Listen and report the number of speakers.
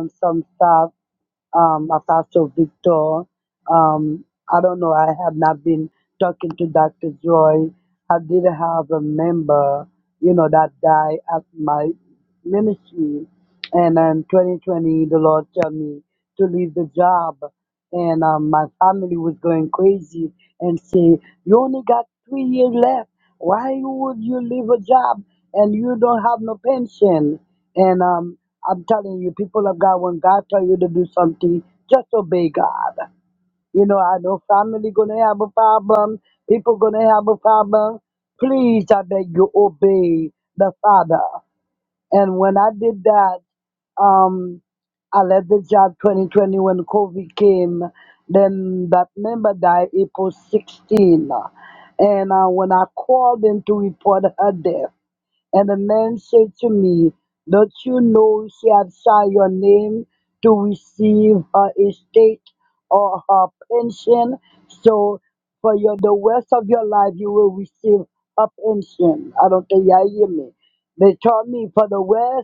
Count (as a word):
one